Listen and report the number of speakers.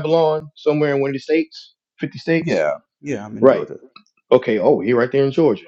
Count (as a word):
two